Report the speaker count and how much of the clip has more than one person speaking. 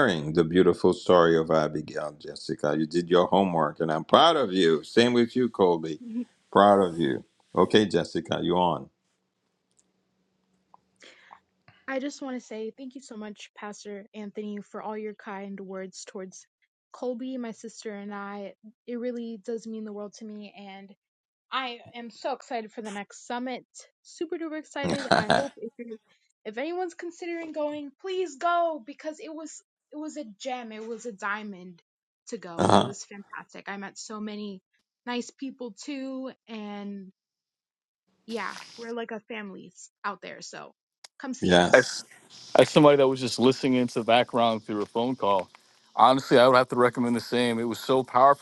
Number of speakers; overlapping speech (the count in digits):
3, about 2%